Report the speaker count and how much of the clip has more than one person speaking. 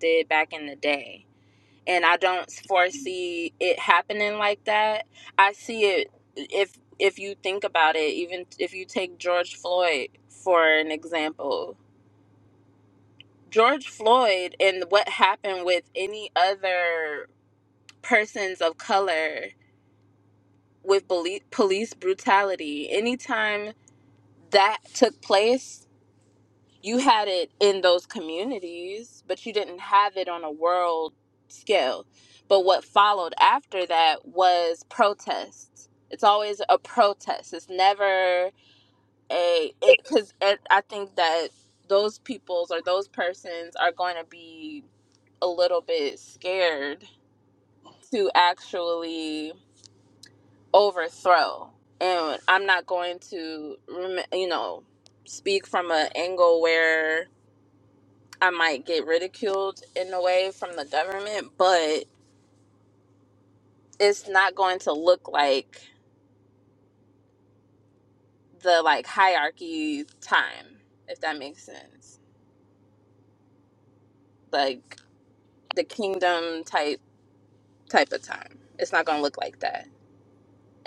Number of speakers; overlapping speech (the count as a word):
one, no overlap